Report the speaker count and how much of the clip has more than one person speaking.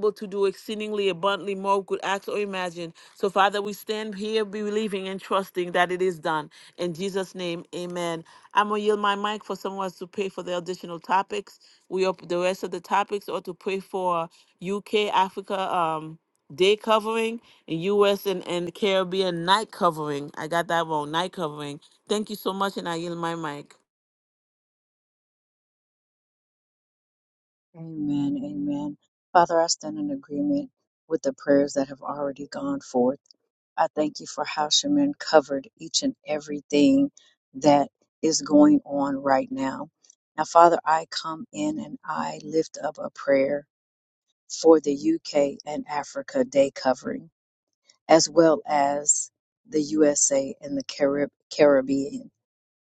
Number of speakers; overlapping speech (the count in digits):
2, no overlap